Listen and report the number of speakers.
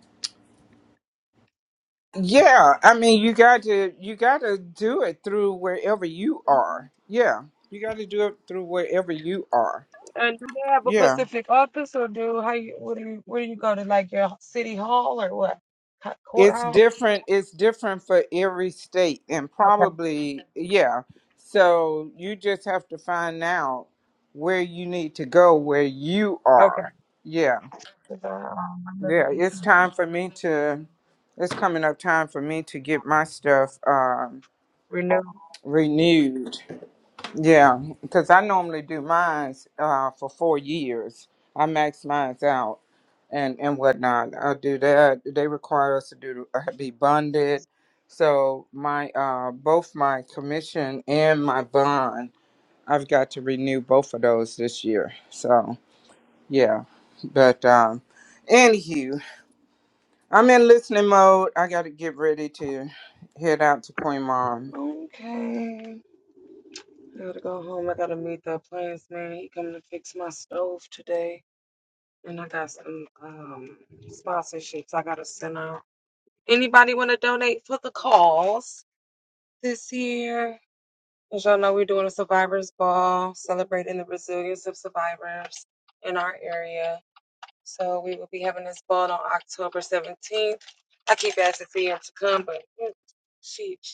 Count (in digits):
2